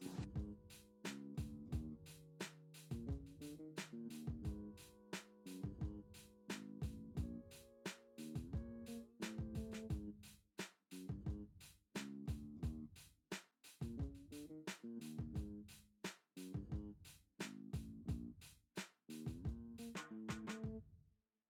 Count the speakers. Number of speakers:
0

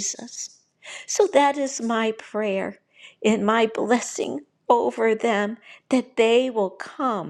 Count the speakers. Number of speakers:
1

